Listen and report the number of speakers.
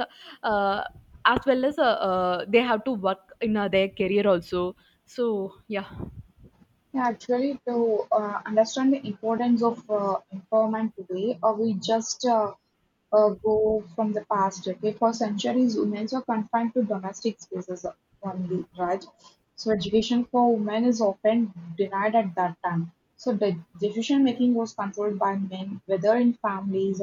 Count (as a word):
two